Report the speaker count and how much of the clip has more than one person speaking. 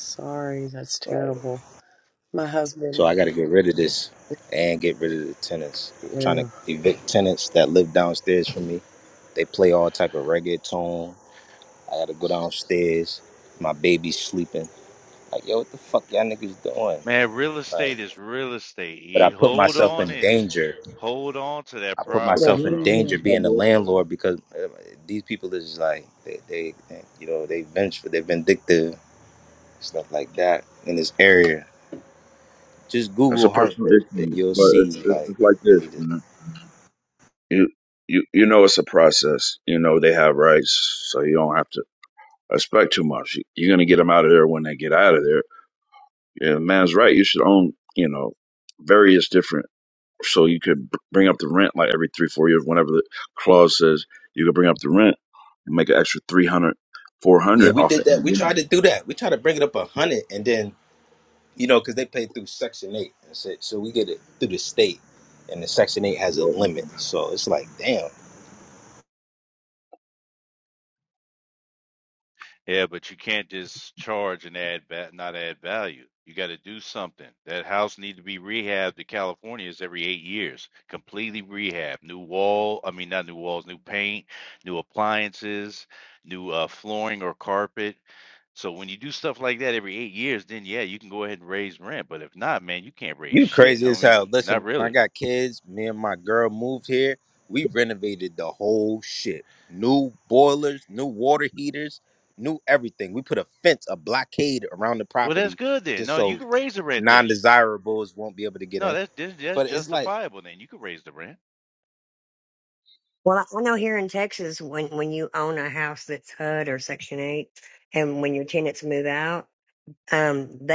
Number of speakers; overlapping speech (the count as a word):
five, about 9%